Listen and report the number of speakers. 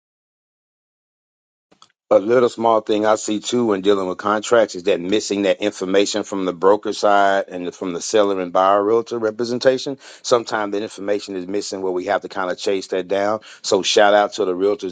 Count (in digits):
1